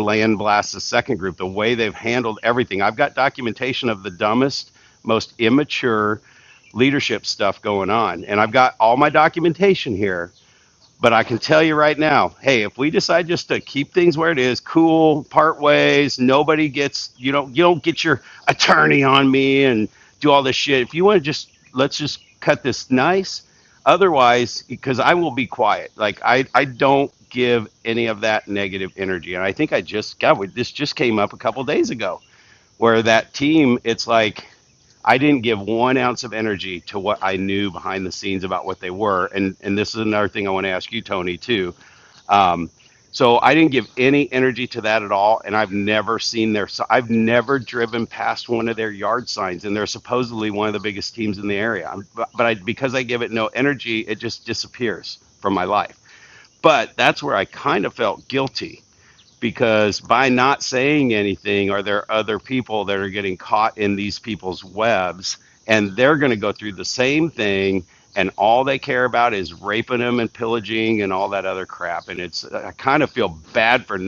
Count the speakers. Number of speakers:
one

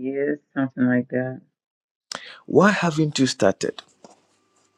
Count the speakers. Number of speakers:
two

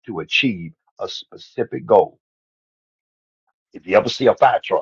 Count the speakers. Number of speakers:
one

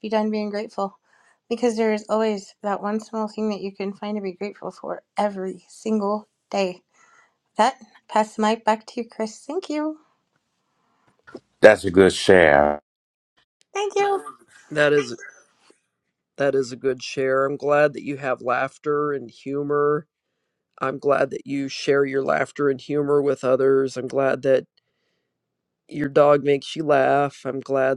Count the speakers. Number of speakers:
three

